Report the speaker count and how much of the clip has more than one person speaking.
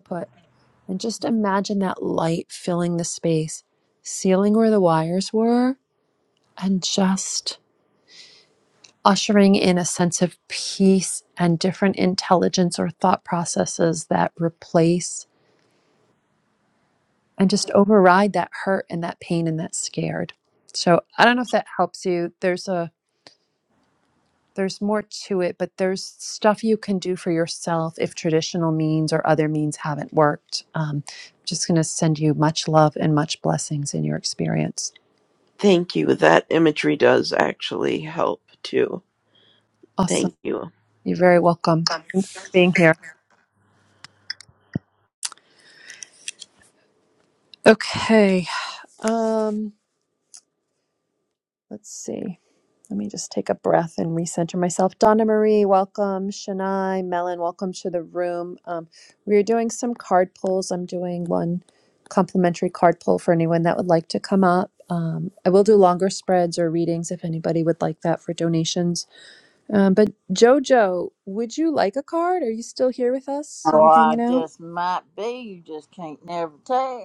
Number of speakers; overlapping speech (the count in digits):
3, about 1%